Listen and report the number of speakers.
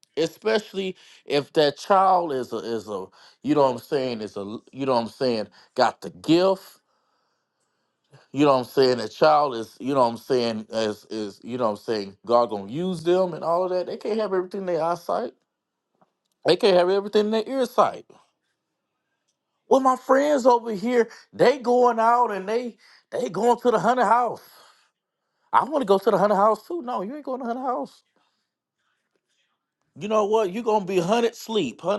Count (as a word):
one